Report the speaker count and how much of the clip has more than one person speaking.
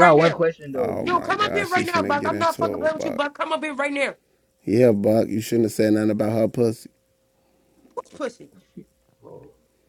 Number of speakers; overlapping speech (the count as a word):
three, about 28%